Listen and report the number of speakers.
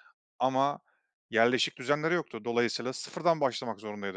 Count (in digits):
1